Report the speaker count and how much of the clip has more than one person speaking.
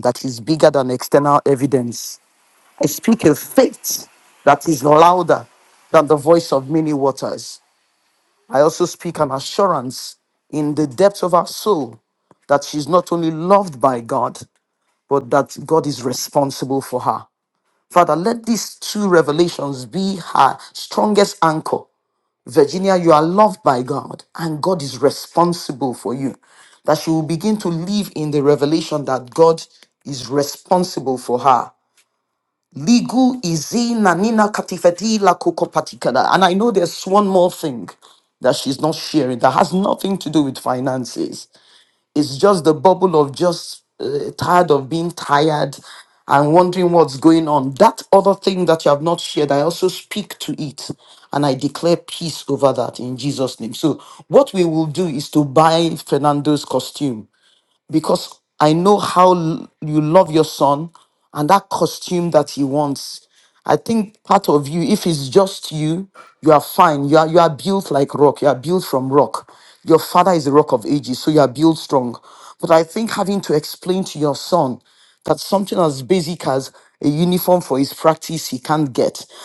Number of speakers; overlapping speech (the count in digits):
1, no overlap